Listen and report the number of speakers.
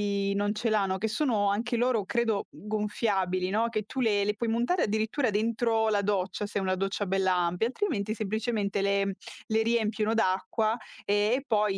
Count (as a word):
one